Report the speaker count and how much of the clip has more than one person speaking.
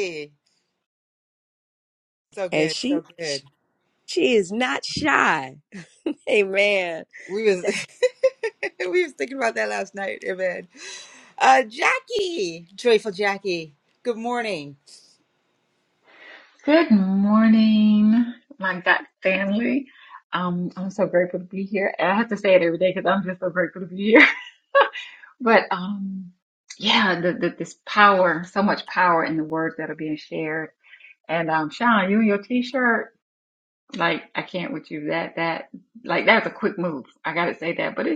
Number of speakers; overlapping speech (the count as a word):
three, about 1%